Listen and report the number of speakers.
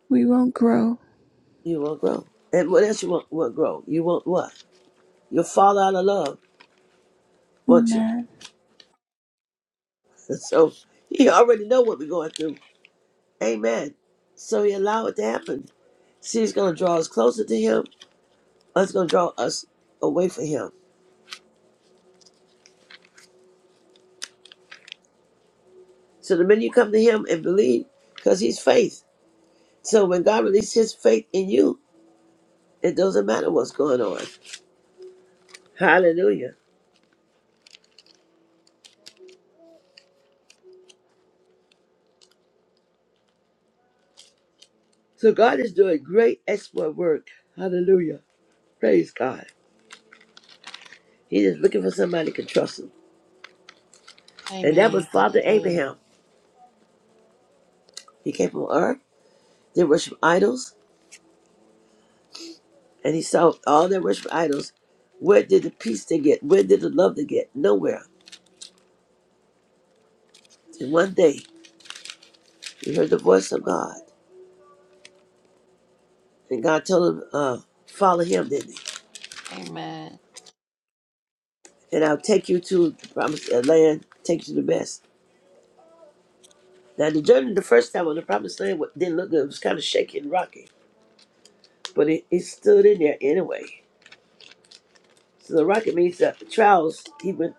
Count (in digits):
3